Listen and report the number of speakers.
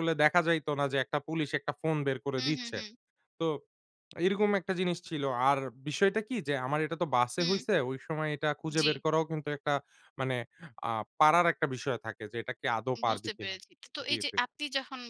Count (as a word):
two